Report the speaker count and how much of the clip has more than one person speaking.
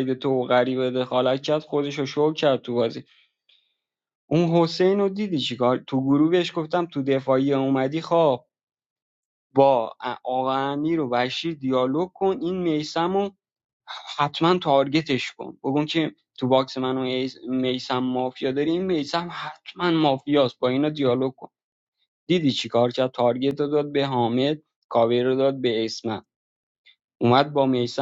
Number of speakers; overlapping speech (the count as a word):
one, no overlap